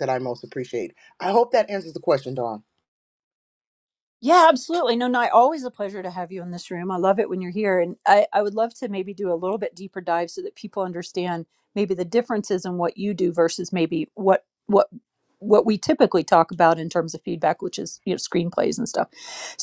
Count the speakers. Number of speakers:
two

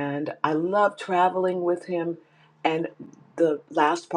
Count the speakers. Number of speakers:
one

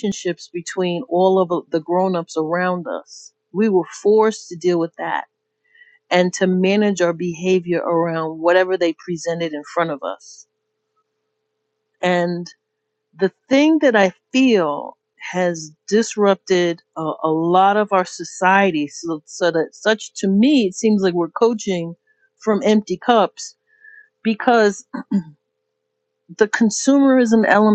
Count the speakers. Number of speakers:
one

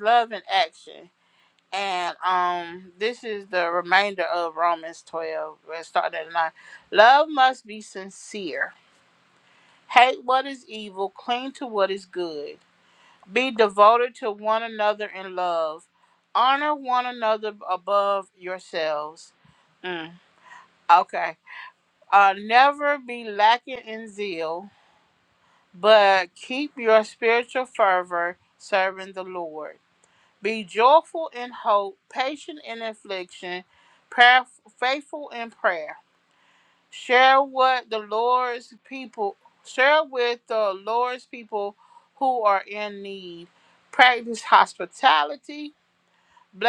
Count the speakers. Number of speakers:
one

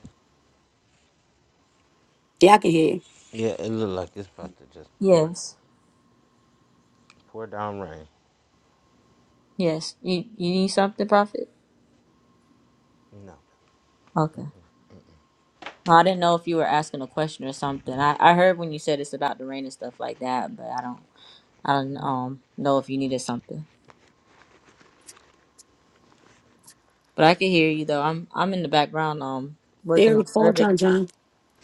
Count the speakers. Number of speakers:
three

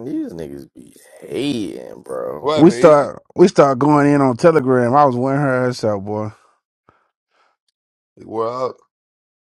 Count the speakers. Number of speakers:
three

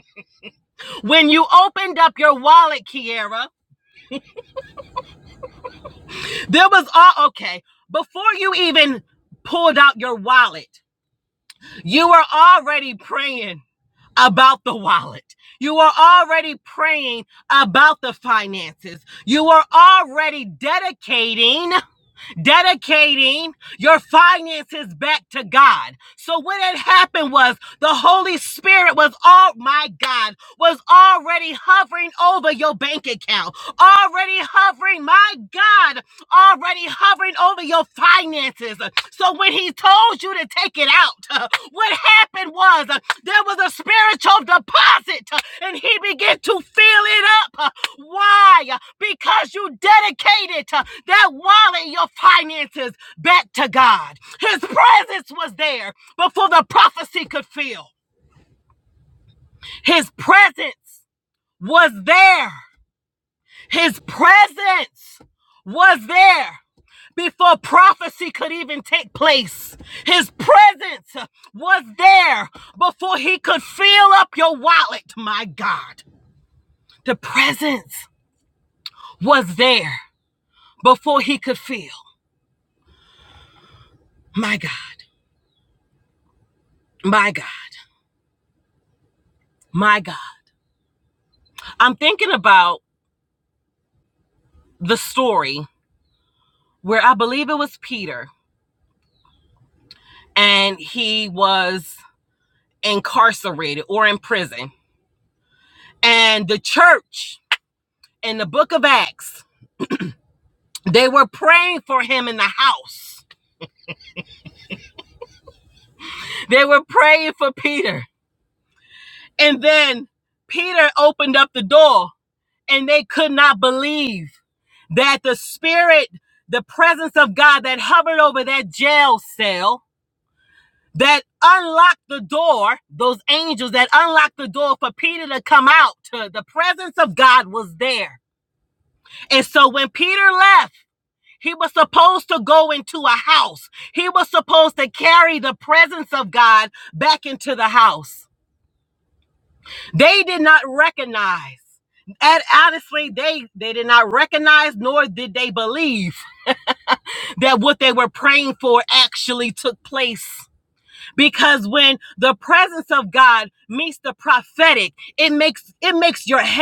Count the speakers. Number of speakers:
one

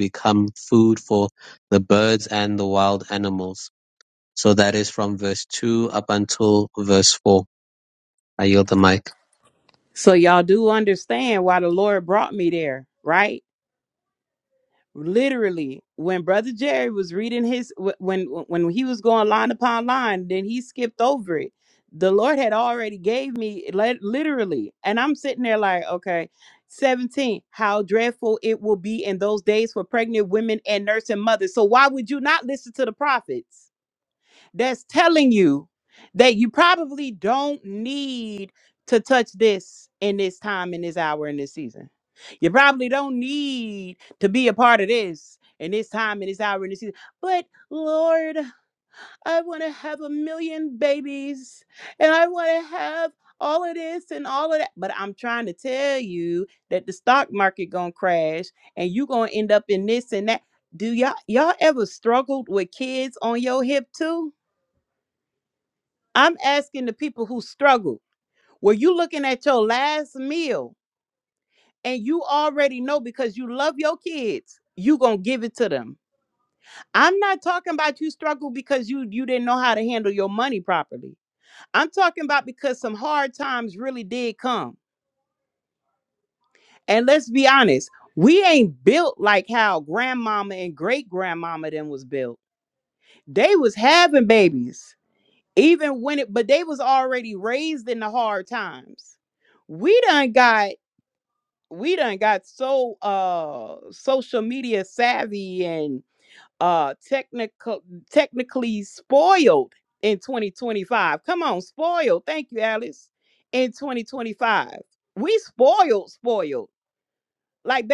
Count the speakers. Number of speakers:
two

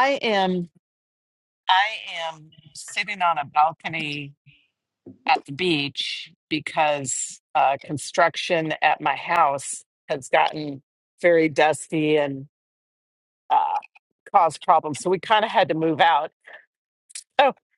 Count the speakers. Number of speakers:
one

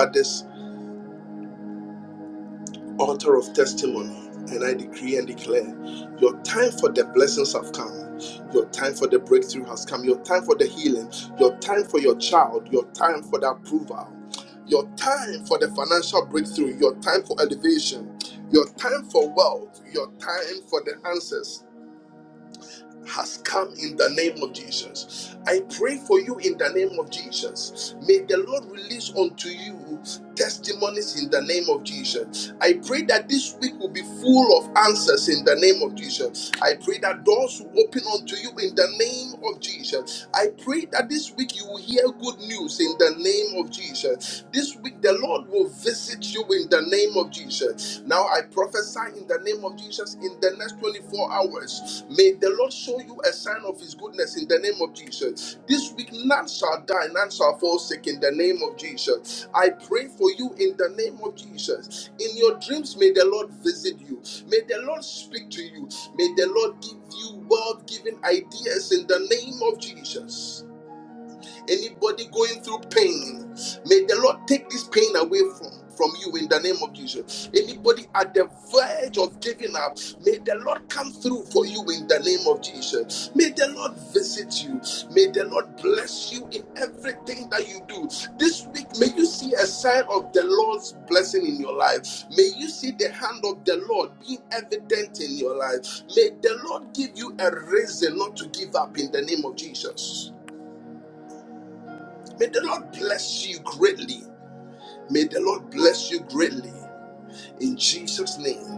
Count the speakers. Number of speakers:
one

